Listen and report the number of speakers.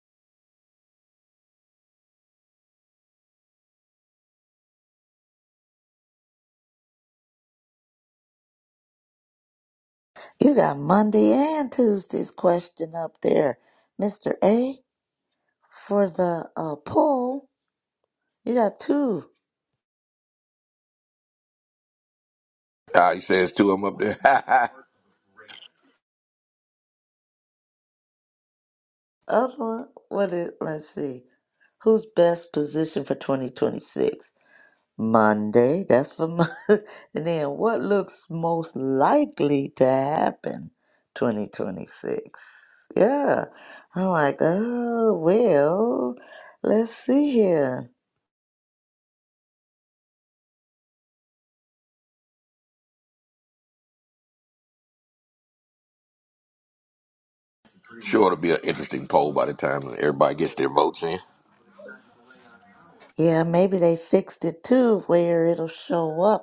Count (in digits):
2